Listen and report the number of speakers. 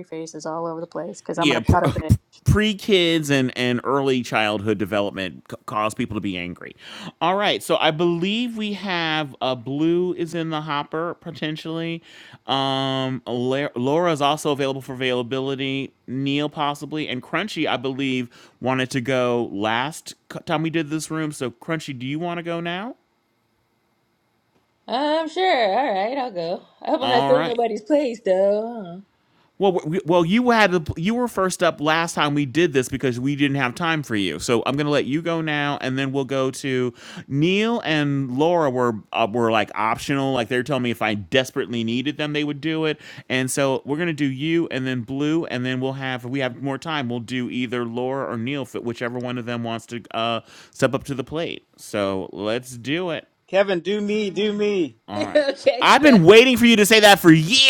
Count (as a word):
four